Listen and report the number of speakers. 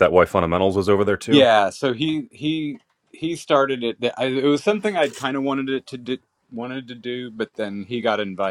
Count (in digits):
2